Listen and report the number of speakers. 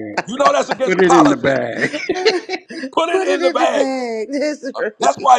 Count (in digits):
3